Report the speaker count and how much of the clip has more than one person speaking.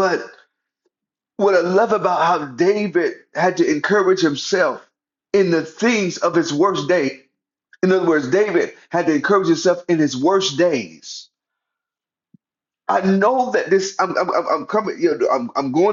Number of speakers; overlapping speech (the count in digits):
1, no overlap